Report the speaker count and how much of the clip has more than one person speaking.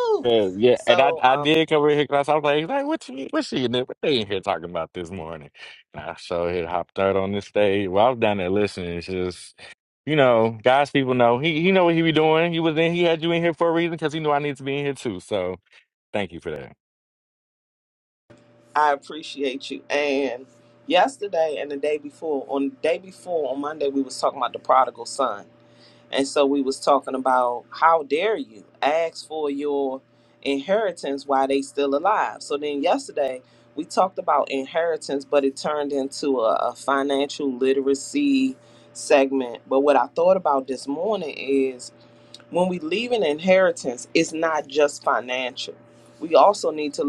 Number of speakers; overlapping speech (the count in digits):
2, about 1%